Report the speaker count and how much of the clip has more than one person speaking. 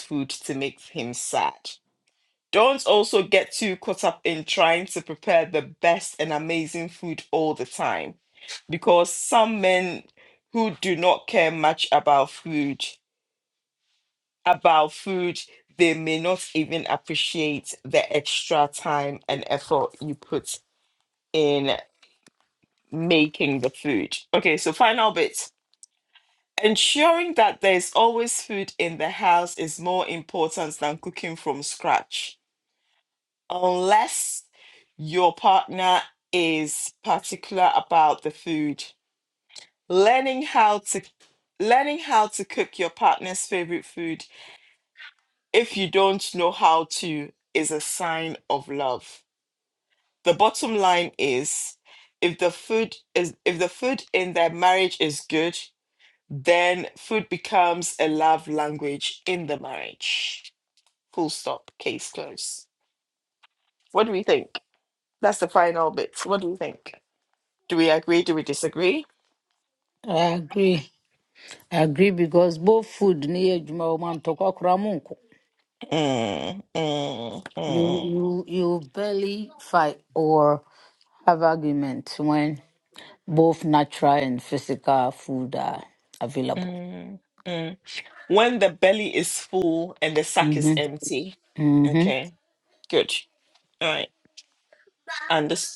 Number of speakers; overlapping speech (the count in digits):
2, about 1%